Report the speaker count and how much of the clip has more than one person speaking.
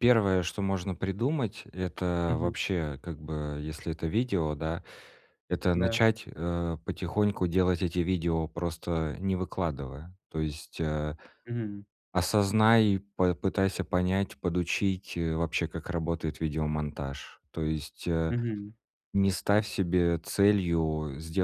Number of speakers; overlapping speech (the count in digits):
2, about 3%